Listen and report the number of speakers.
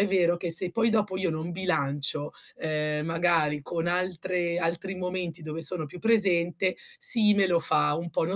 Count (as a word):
one